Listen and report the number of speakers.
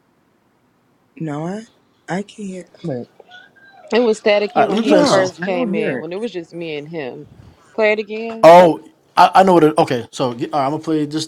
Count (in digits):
3